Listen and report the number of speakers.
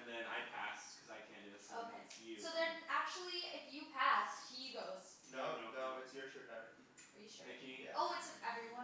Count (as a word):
three